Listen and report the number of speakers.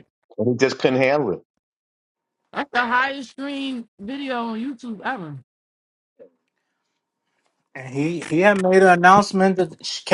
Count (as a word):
three